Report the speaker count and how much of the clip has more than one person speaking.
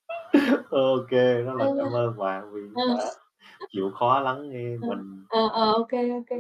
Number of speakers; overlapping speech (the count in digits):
2, about 10%